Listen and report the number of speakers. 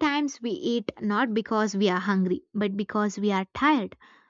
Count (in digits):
1